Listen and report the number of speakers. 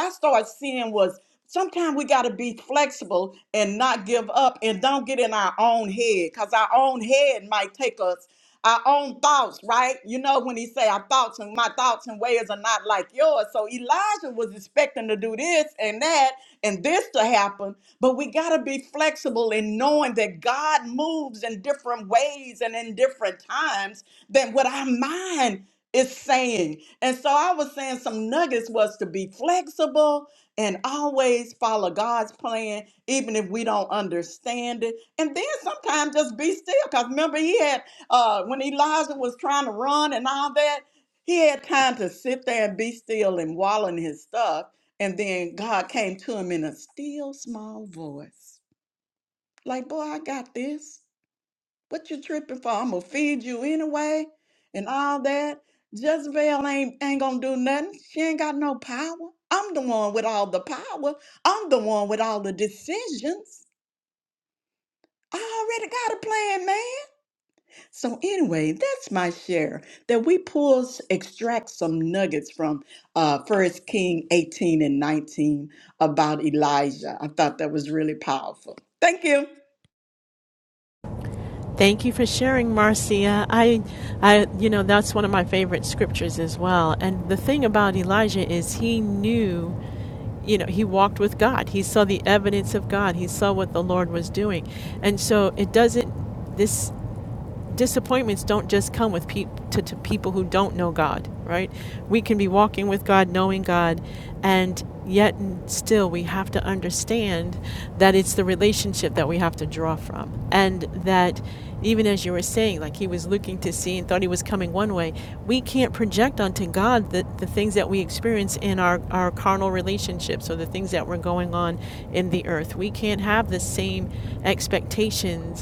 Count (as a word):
two